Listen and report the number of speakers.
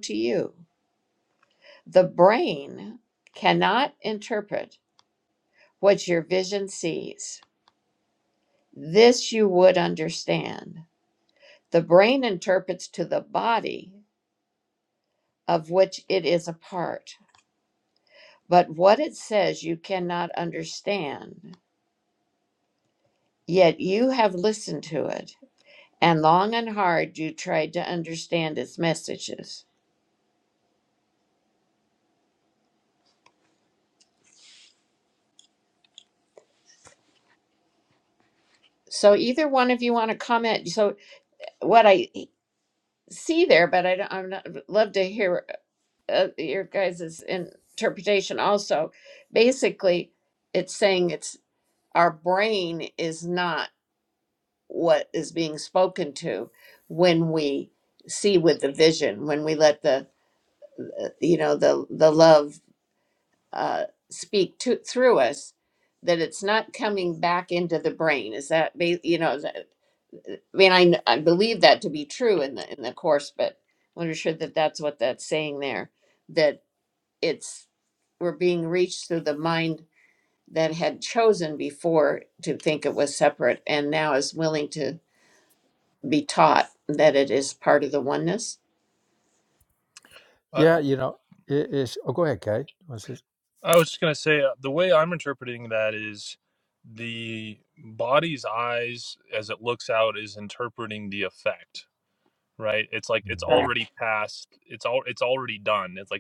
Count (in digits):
3